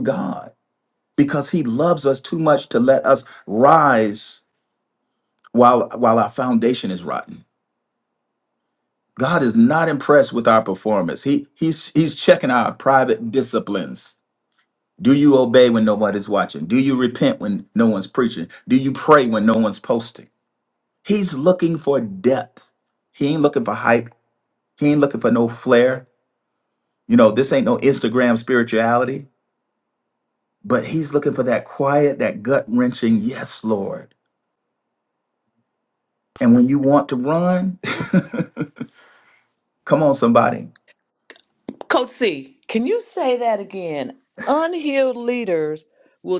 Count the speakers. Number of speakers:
2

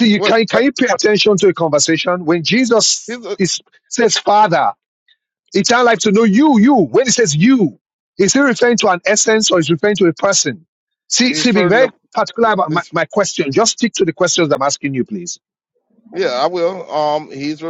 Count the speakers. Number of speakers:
2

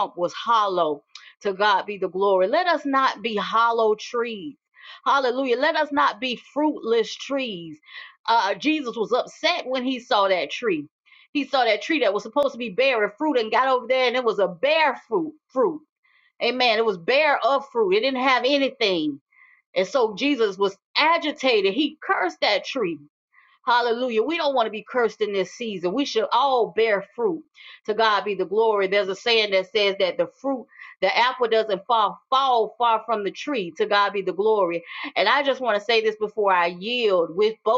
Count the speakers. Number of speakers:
1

